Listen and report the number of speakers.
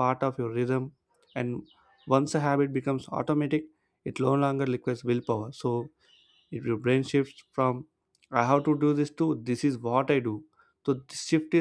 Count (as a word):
one